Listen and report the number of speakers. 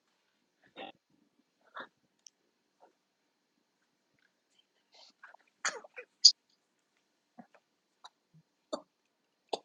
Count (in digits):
0